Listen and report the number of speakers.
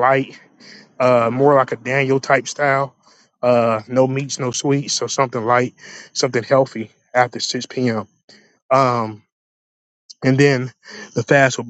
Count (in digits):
1